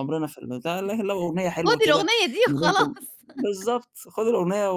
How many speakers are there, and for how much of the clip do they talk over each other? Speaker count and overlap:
2, about 19%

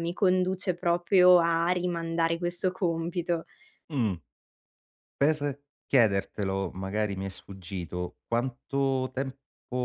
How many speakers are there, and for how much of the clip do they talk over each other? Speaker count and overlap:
2, no overlap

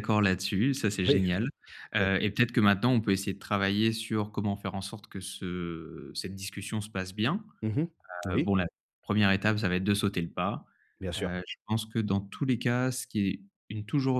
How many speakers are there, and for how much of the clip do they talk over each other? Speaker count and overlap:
2, about 5%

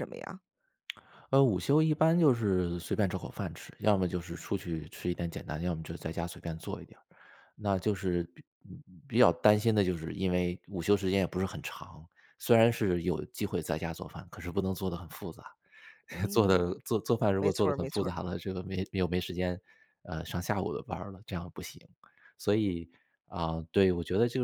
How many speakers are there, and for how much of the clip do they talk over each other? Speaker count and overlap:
2, about 4%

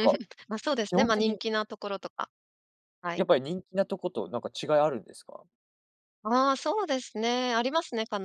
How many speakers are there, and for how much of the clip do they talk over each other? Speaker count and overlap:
2, about 6%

